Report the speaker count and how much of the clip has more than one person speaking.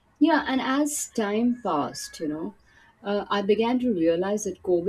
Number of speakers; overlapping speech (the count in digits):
1, no overlap